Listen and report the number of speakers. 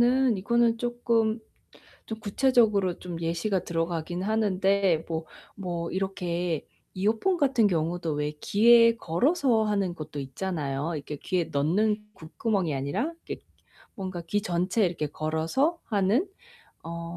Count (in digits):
1